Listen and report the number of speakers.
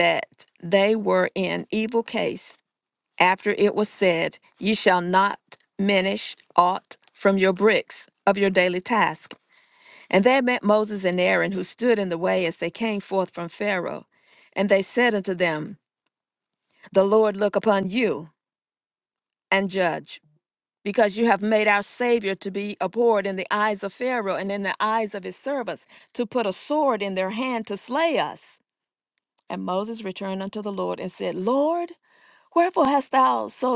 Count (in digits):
1